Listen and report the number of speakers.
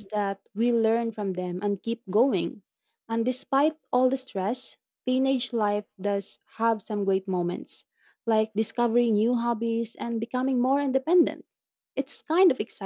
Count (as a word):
one